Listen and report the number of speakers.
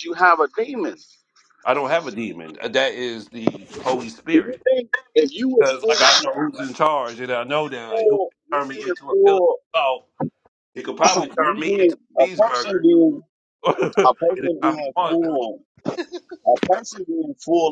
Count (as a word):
two